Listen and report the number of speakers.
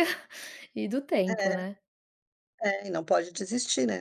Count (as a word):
two